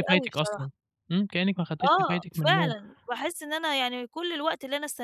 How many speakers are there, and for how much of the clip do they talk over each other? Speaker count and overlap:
two, about 32%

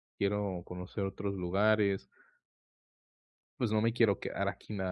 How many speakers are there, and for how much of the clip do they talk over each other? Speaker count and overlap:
one, no overlap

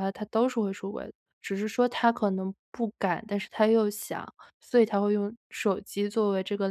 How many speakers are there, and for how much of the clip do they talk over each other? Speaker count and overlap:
one, no overlap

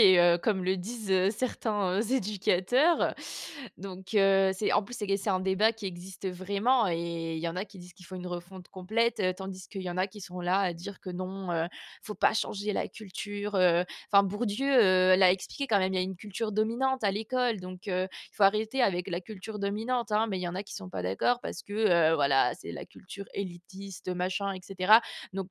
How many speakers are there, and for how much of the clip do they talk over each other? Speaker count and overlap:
one, no overlap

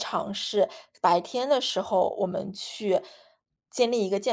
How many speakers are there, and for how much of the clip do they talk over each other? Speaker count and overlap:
one, no overlap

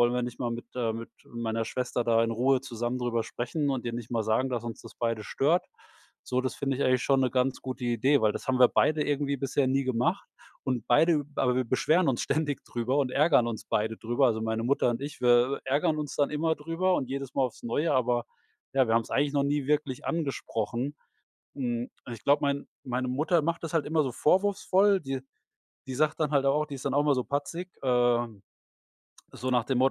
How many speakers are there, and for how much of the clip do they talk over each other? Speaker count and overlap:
one, no overlap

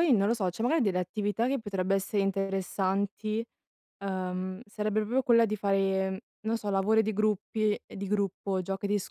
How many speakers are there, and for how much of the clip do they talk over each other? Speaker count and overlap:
one, no overlap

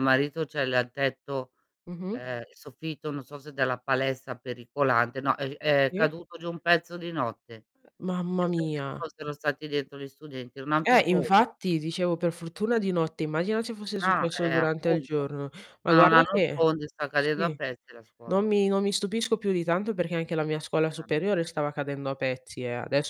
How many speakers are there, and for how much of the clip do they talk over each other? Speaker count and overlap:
two, about 17%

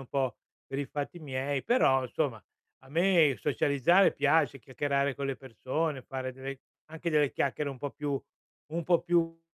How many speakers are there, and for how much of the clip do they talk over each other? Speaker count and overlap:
one, no overlap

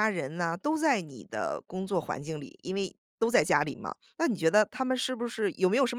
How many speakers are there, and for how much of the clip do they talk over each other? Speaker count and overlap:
one, no overlap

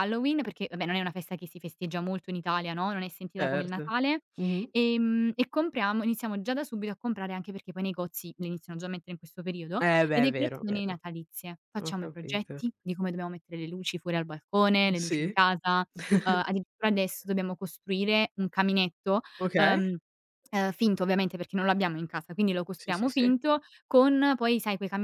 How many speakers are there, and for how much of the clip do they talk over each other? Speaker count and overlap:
two, about 14%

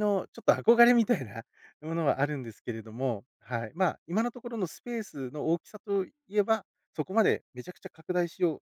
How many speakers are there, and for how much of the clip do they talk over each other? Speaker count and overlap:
one, no overlap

